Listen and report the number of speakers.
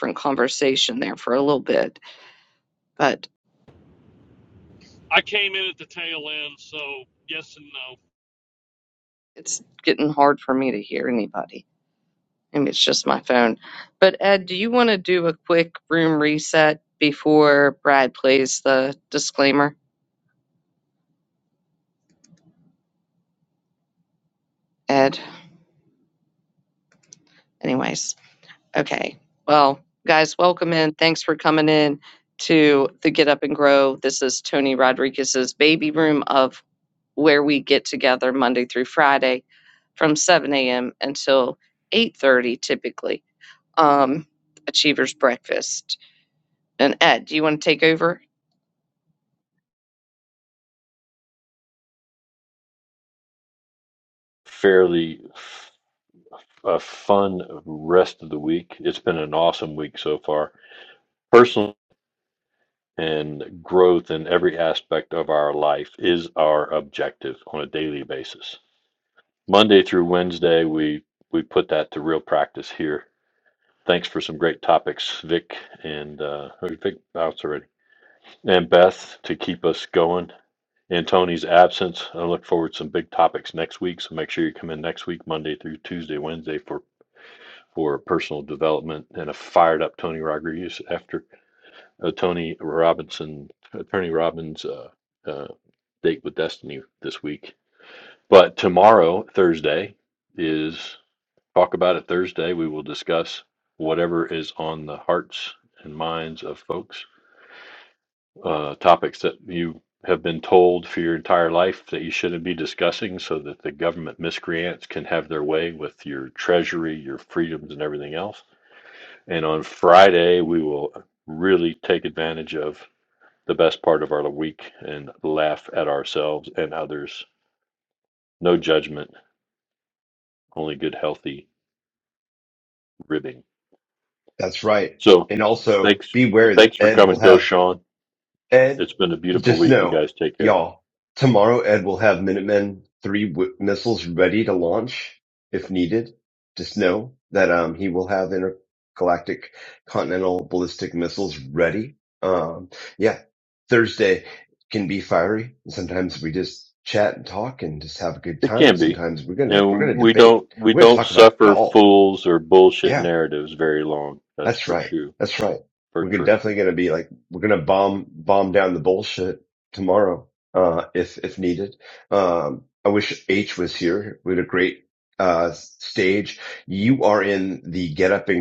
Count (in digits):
4